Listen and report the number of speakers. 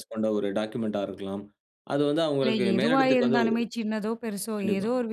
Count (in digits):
2